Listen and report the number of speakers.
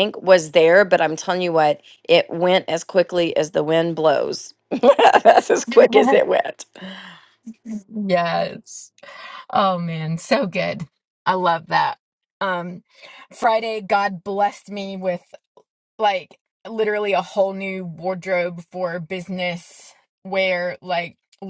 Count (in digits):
2